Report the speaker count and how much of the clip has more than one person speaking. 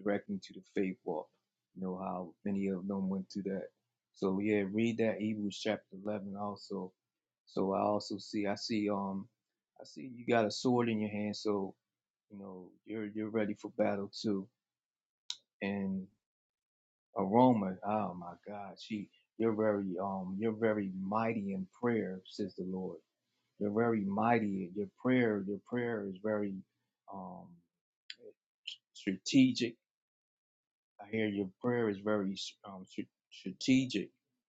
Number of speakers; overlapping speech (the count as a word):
one, no overlap